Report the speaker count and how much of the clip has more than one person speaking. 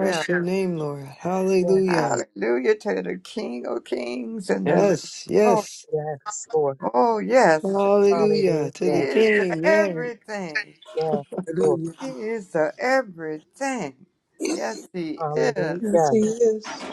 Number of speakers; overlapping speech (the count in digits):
4, about 30%